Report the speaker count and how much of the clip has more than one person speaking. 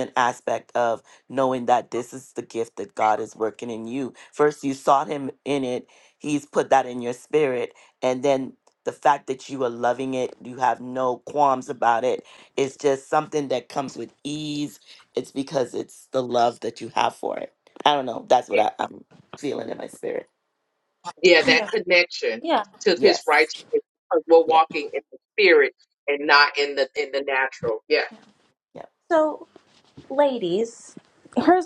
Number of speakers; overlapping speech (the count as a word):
three, about 2%